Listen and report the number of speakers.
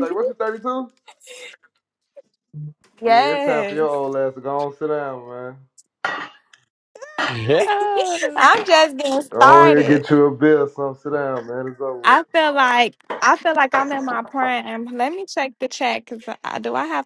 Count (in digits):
3